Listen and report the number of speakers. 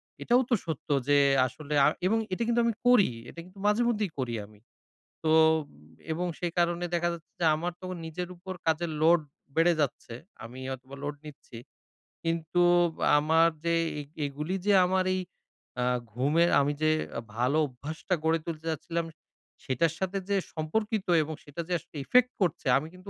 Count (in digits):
1